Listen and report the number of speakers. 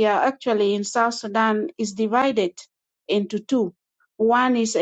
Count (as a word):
one